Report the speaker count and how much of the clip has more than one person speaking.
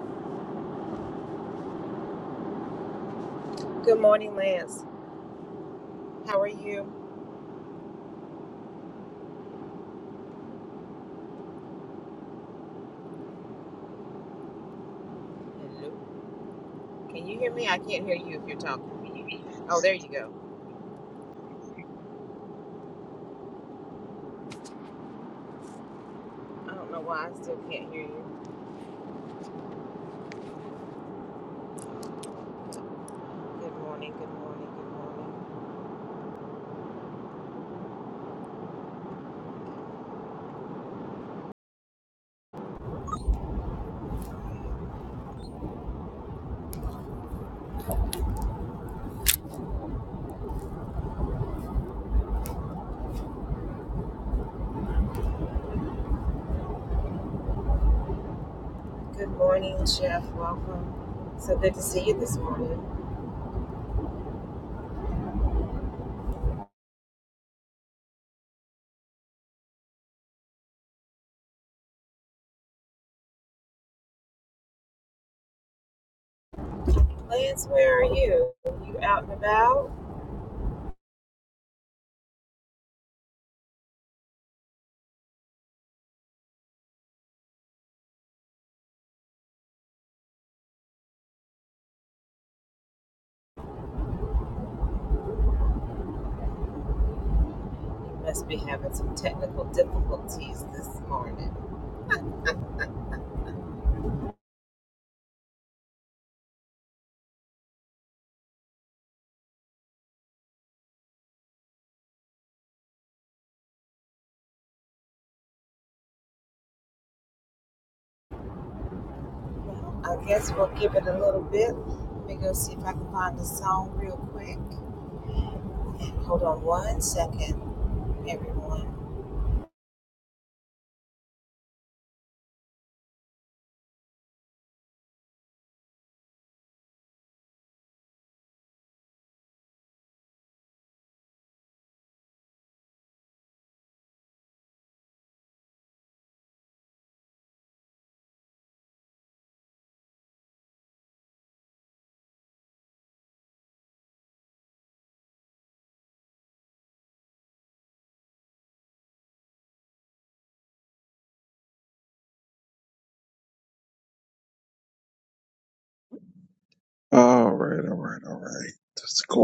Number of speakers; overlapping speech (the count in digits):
2, no overlap